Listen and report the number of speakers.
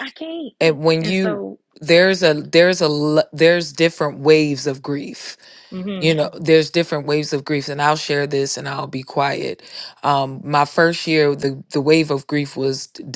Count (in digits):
2